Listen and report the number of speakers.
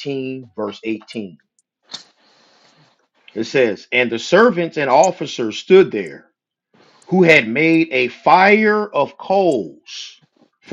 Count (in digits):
1